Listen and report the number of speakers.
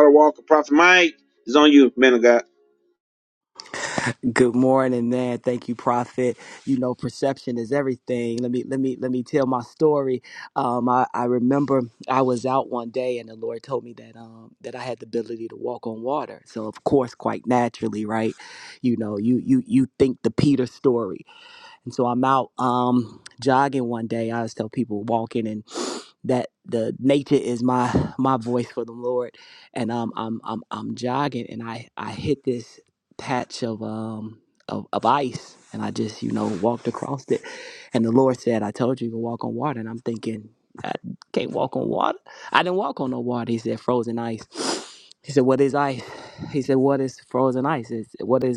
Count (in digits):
2